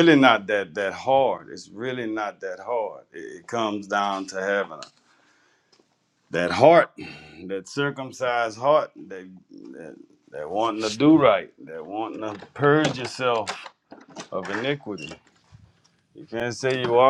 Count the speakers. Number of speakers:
1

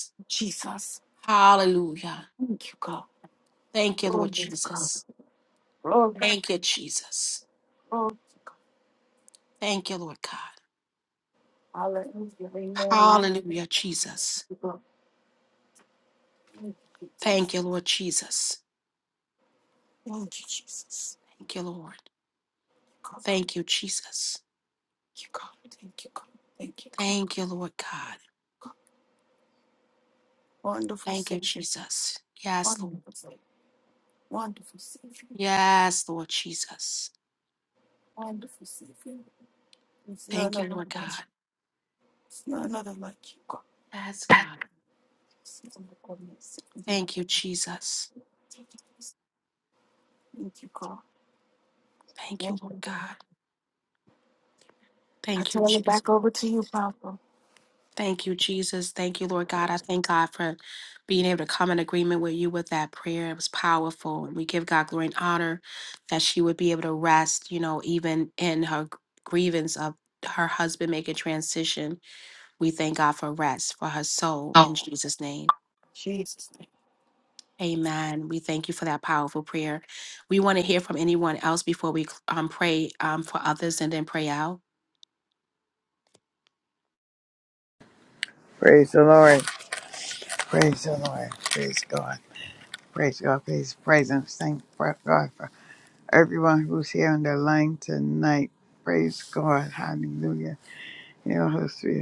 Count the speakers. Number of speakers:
3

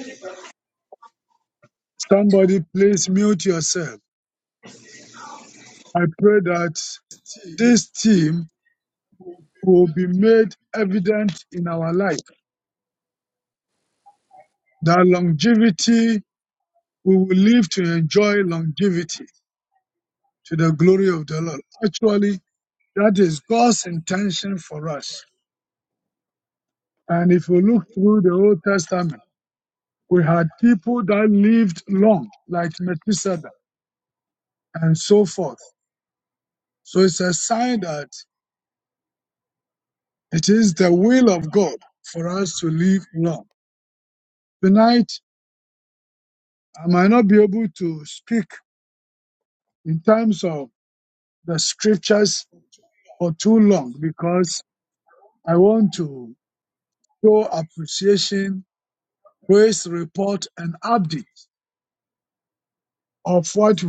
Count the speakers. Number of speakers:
1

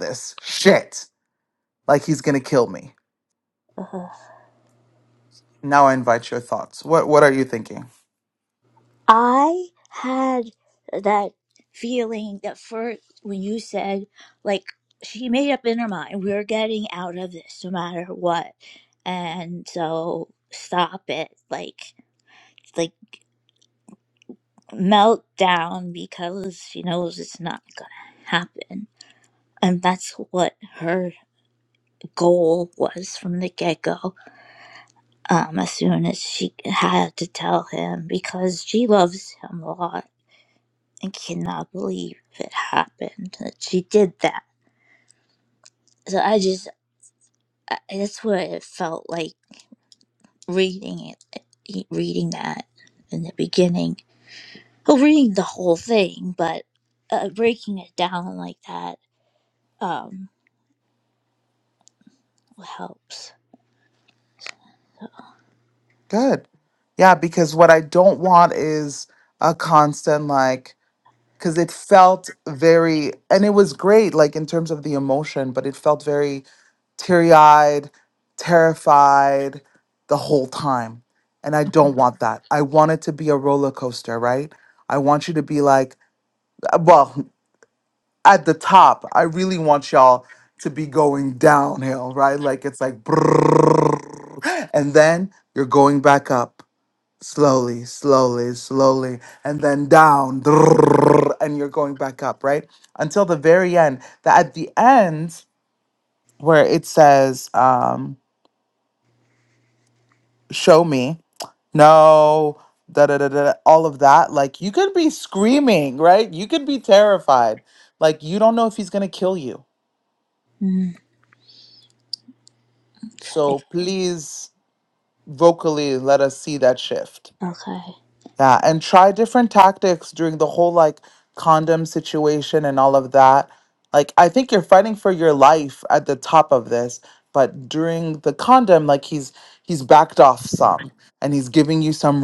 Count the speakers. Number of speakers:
2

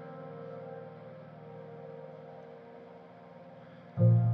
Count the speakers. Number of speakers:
0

